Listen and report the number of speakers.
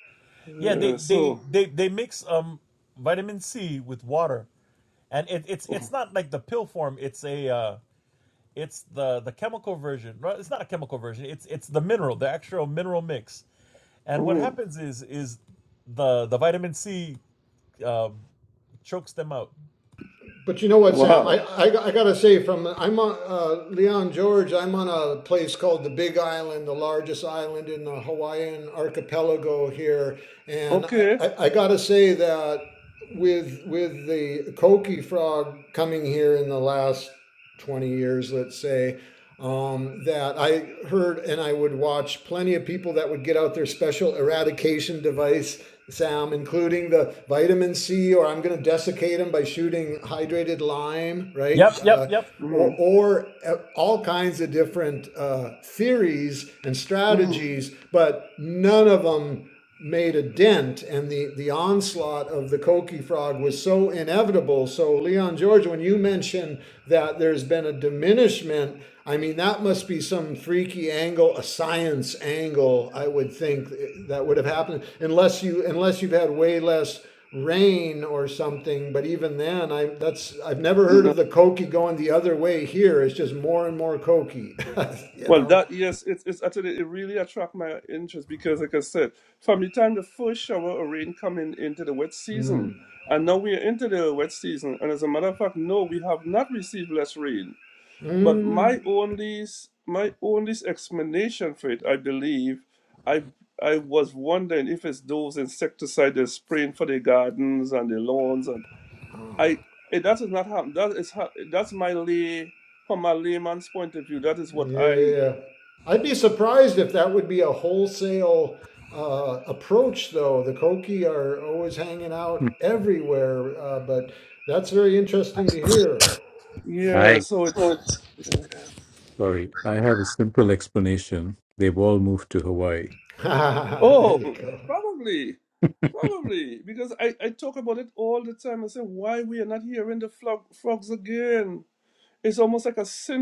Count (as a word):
four